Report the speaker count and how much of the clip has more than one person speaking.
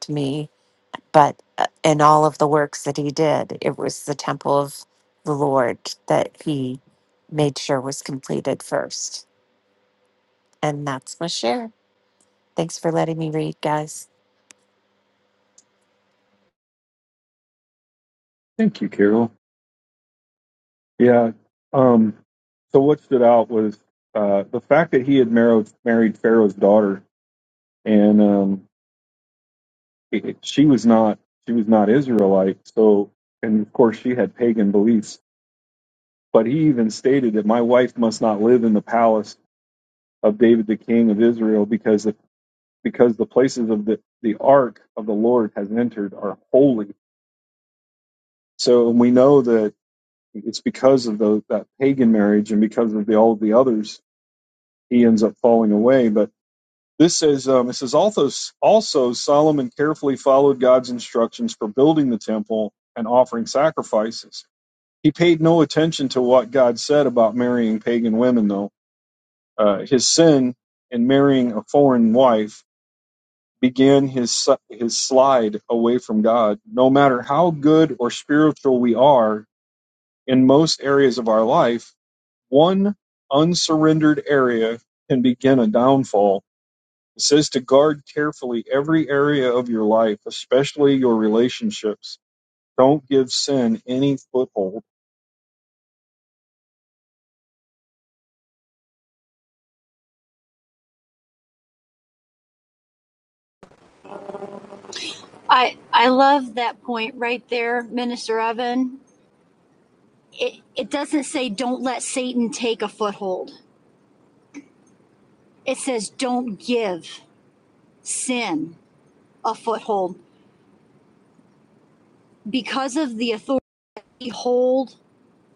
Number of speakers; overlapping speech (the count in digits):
3, no overlap